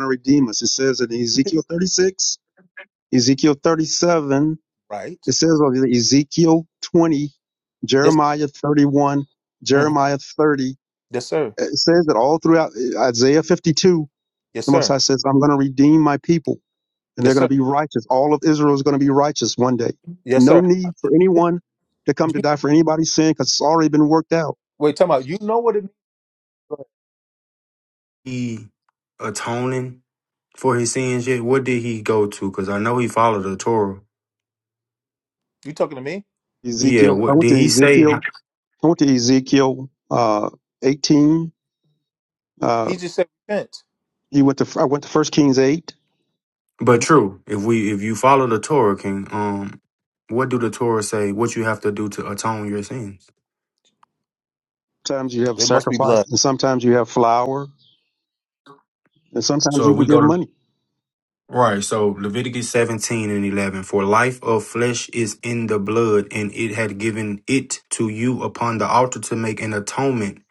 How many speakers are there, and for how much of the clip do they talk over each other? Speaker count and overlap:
3, about 6%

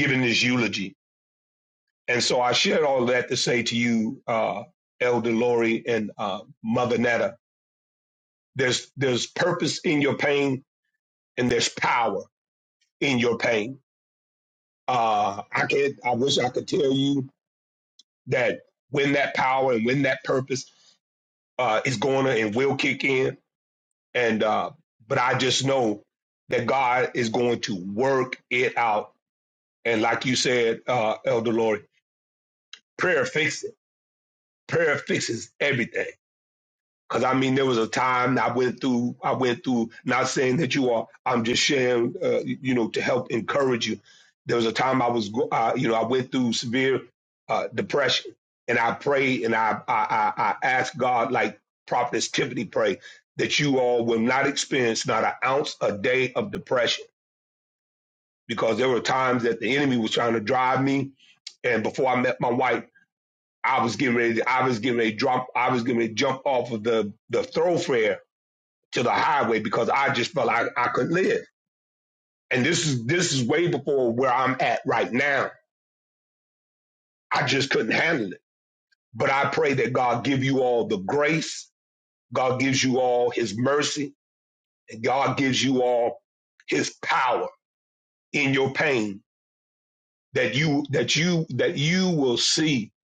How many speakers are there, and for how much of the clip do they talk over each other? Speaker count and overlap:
1, no overlap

